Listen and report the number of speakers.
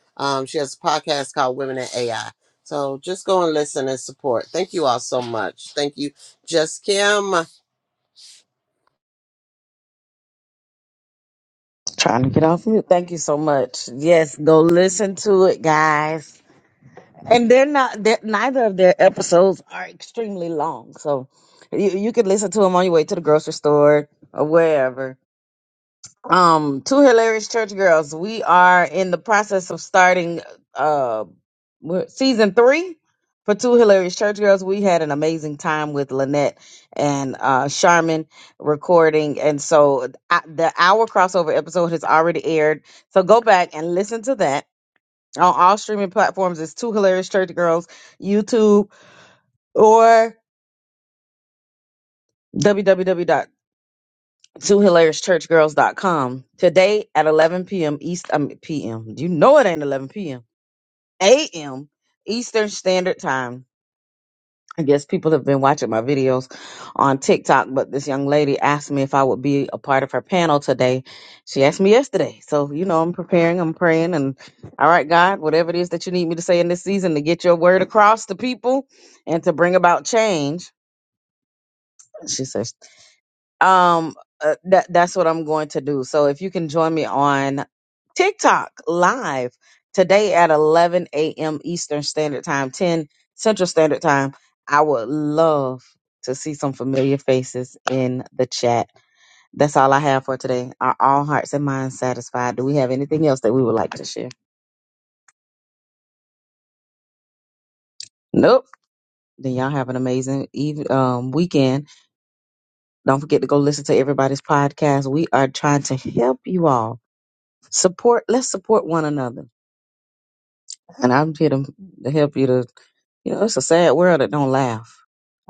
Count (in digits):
2